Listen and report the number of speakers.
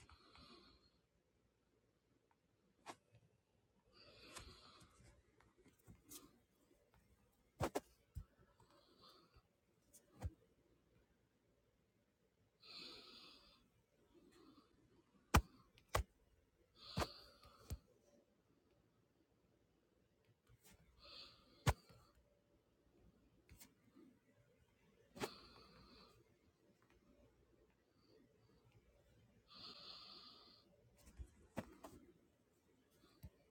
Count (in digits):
0